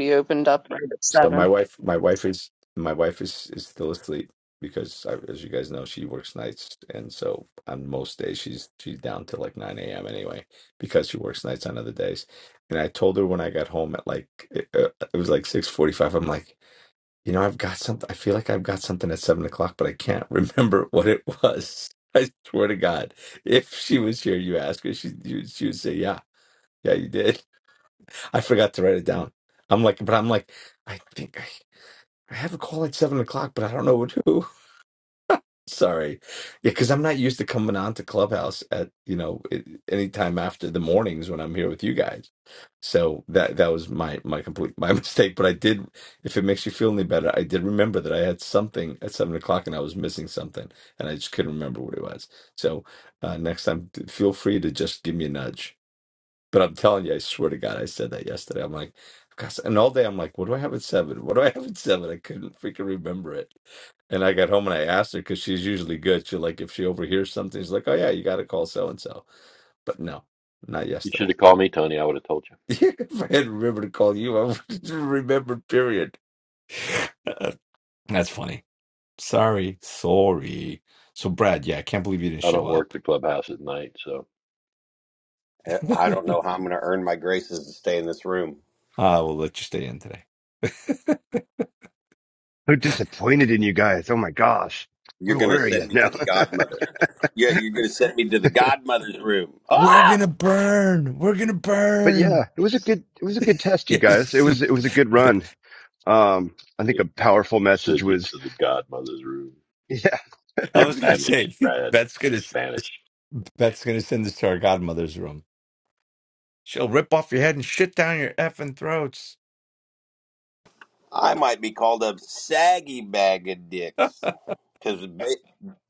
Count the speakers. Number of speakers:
five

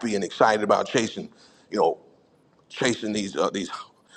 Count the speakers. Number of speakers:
one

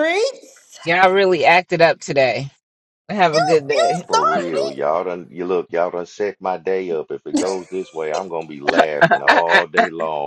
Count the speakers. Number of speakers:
three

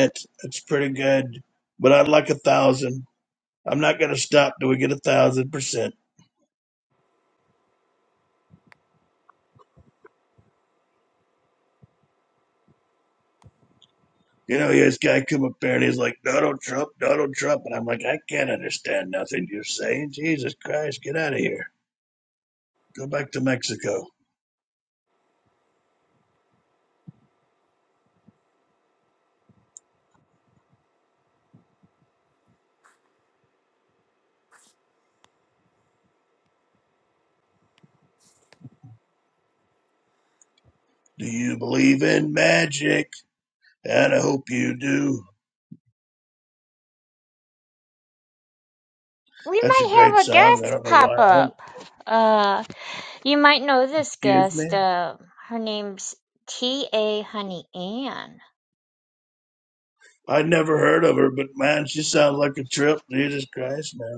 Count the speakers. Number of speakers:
two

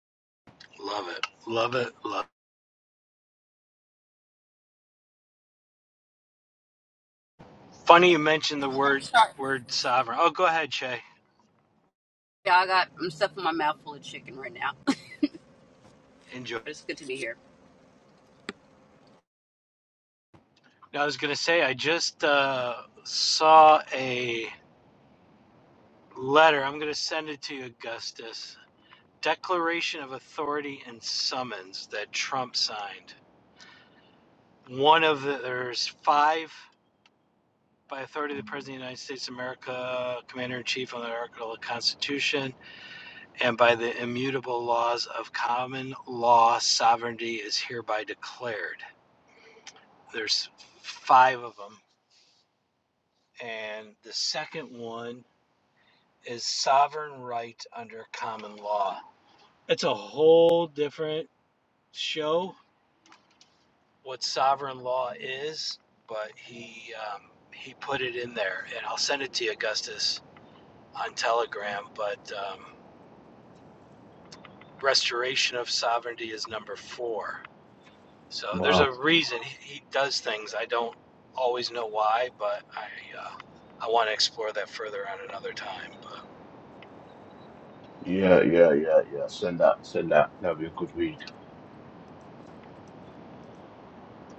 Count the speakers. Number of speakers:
three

